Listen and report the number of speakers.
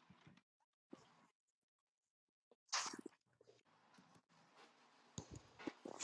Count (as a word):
zero